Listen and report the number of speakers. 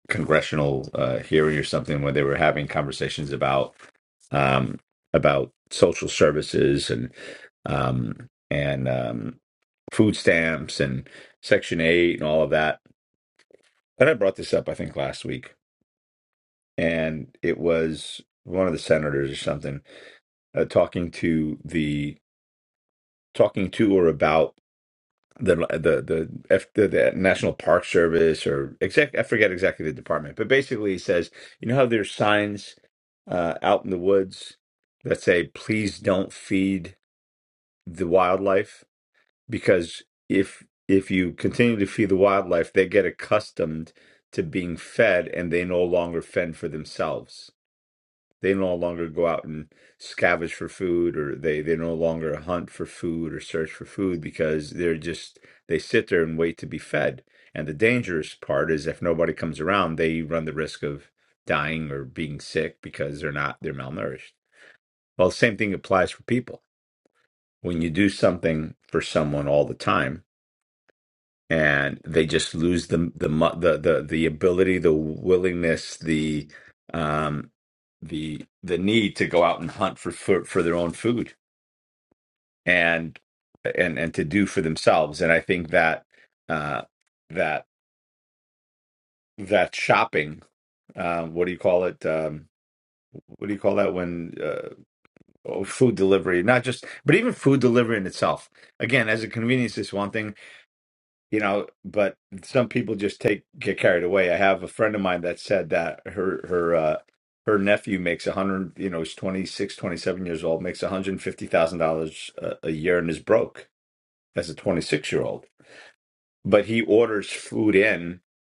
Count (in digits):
1